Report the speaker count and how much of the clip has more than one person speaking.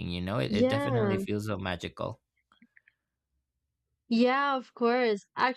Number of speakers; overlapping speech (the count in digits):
2, about 14%